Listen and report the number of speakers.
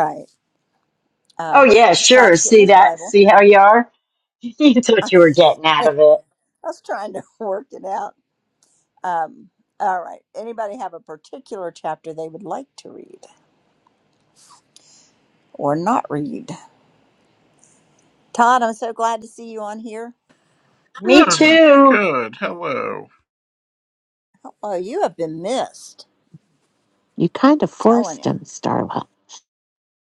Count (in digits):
4